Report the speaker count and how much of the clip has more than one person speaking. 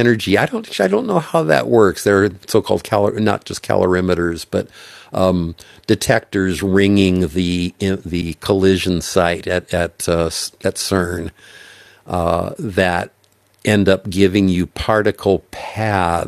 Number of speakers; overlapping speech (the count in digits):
1, no overlap